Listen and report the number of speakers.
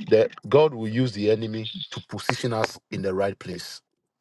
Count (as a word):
one